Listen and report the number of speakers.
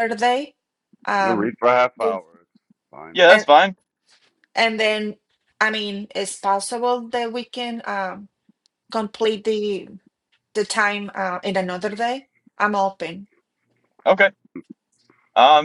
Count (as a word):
three